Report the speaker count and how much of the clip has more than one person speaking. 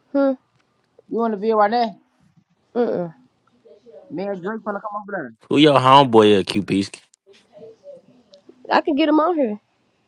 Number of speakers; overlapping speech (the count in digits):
3, no overlap